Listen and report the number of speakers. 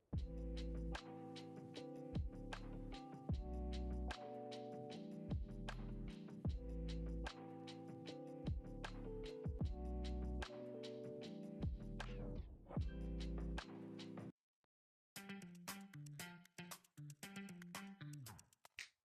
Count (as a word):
zero